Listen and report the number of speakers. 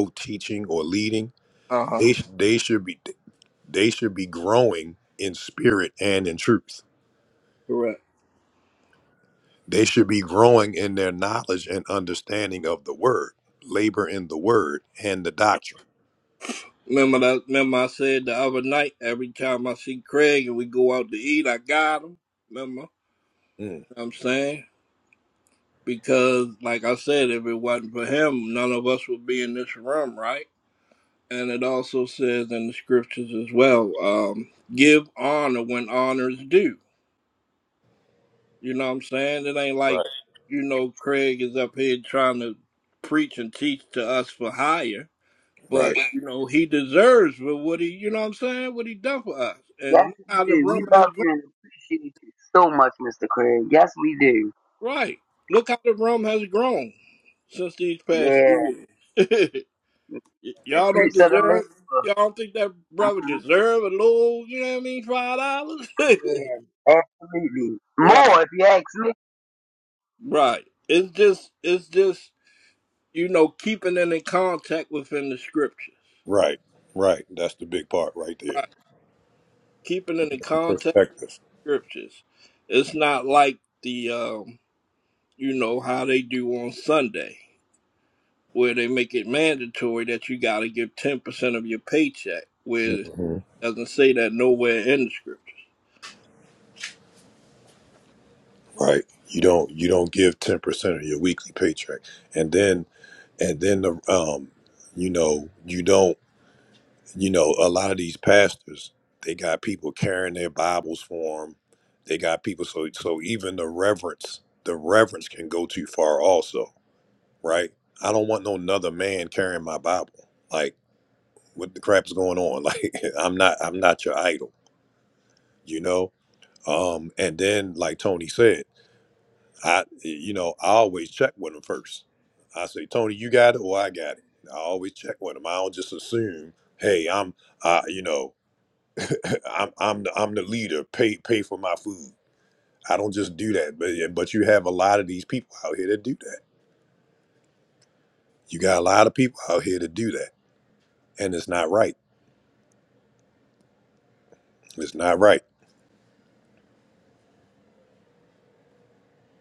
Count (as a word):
three